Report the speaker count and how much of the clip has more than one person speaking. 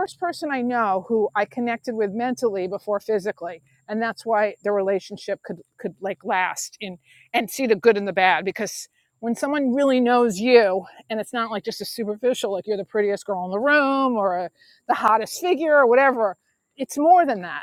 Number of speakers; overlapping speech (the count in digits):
1, no overlap